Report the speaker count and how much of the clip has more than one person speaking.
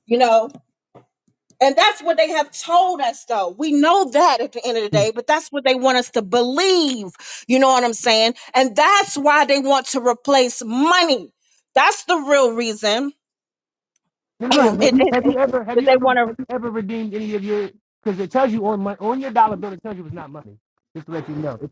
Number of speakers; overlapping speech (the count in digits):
2, about 6%